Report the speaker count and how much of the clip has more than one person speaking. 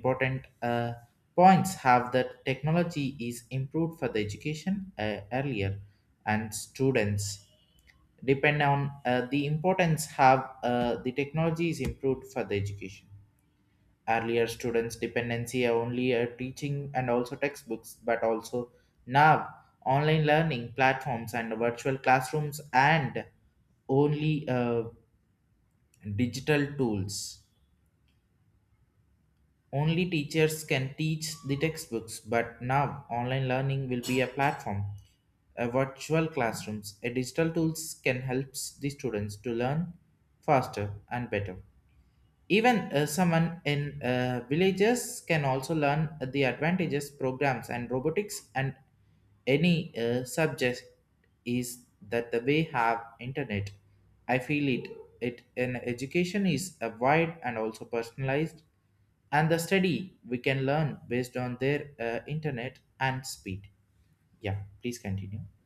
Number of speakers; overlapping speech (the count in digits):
1, no overlap